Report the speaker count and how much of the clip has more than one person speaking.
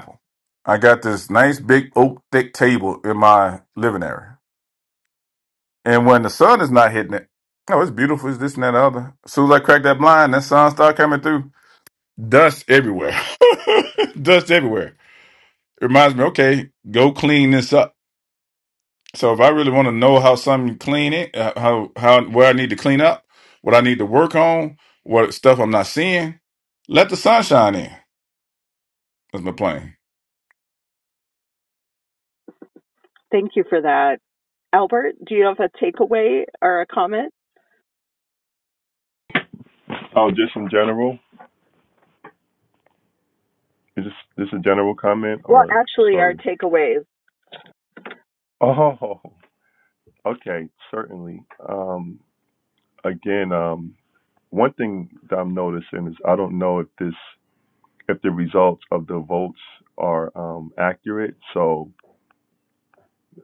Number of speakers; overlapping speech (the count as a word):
three, about 1%